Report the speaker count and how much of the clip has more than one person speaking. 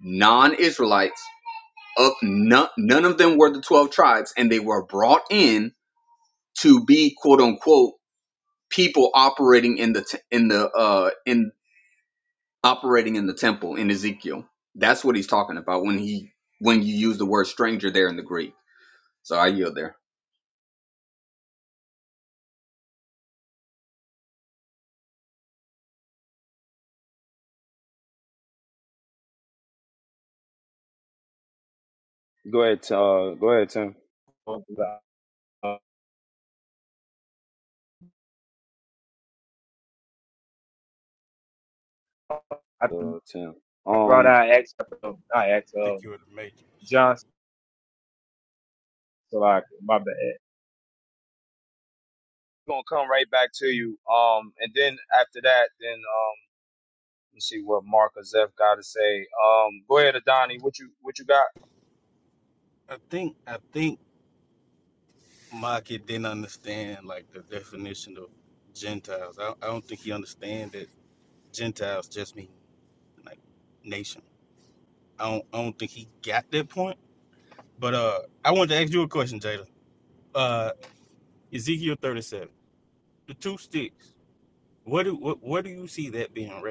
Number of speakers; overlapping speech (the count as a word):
four, about 1%